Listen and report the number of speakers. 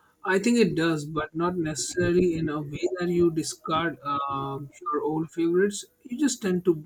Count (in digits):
1